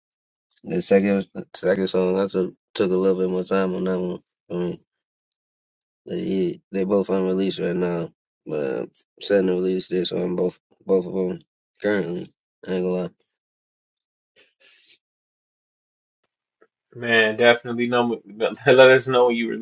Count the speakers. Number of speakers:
2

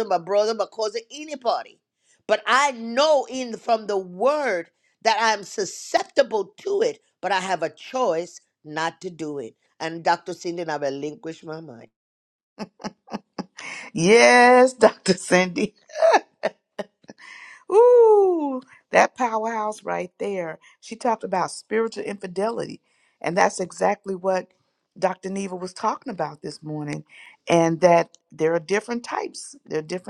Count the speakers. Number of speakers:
2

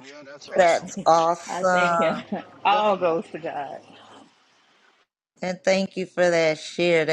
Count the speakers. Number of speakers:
3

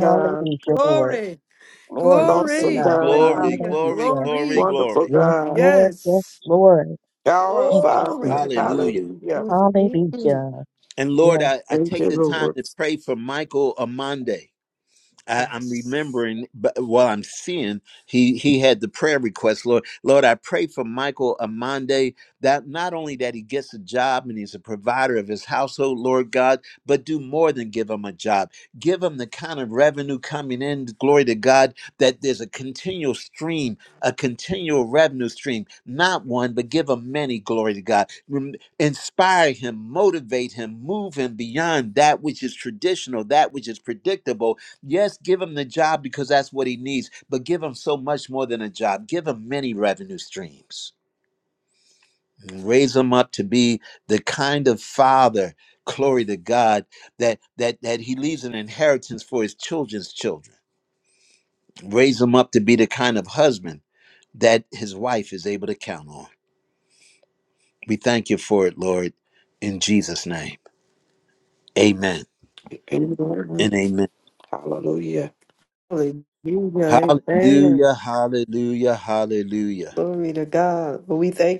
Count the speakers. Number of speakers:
4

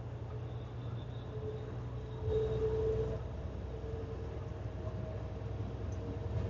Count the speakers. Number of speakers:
0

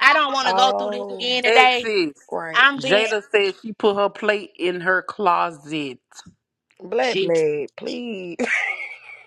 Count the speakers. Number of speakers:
3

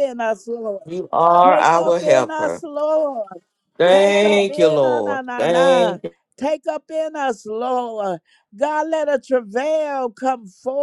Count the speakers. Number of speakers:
2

